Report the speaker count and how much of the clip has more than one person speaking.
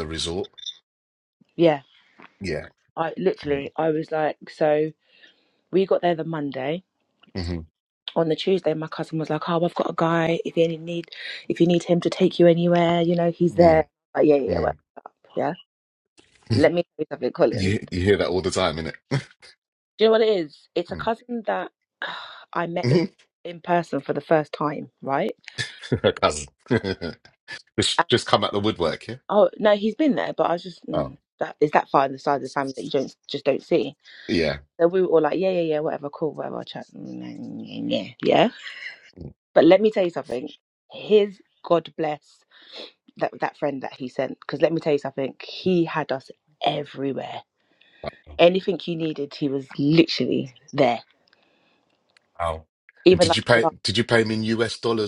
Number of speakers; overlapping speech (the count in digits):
2, about 3%